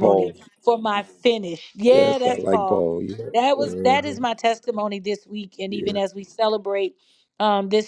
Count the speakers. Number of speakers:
two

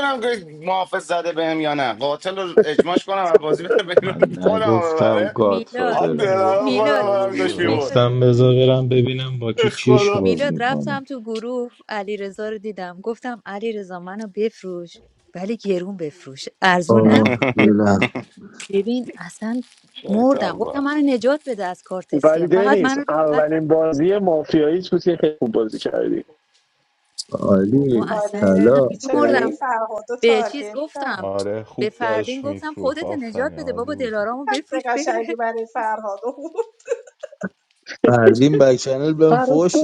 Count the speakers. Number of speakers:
seven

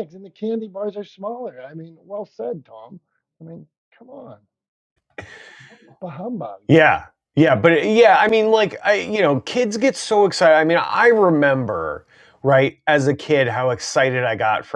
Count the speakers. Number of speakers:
two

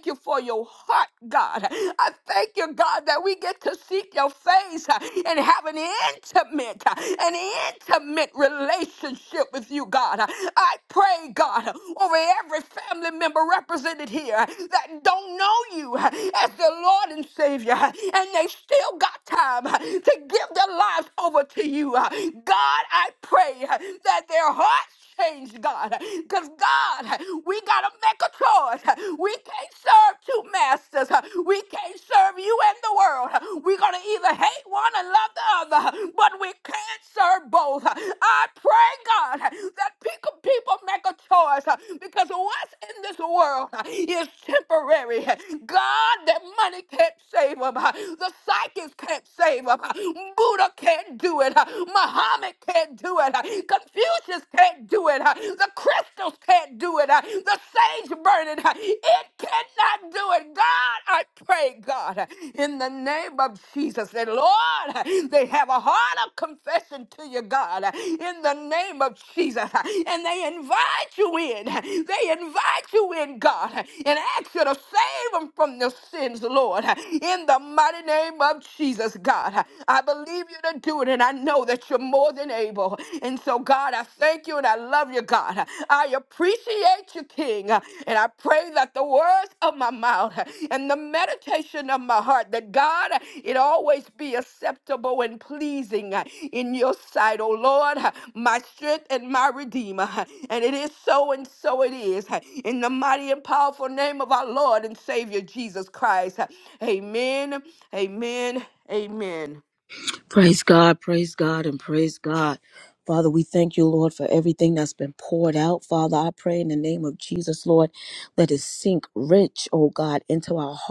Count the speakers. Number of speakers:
two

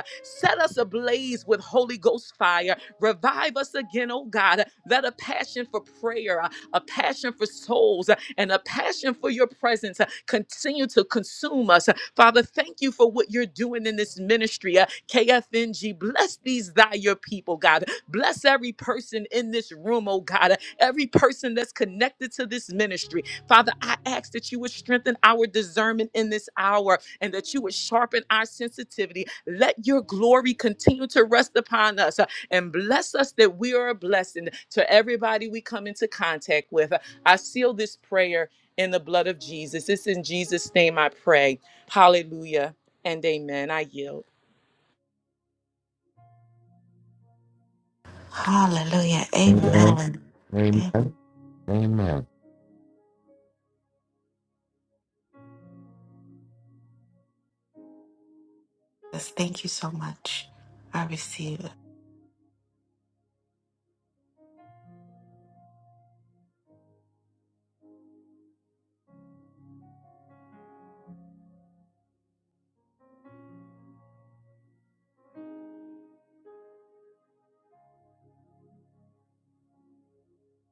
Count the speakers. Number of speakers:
three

